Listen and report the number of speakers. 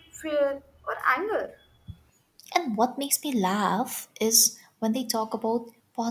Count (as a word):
two